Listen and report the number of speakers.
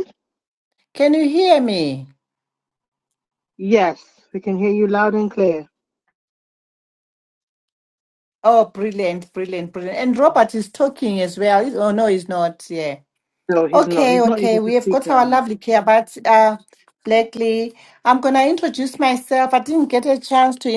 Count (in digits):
2